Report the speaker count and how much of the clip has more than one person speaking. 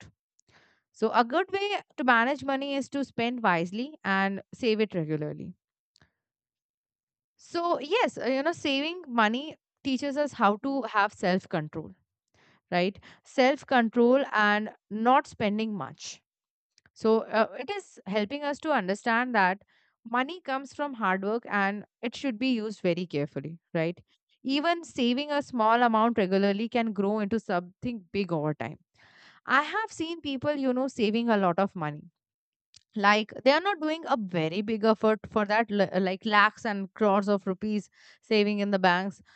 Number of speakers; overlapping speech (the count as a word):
one, no overlap